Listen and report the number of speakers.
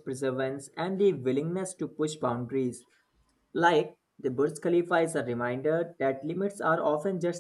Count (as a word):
one